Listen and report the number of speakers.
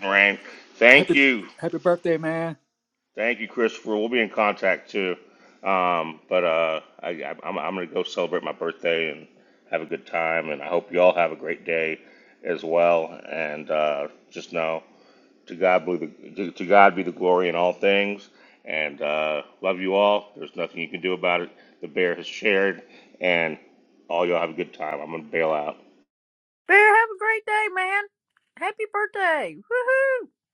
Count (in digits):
3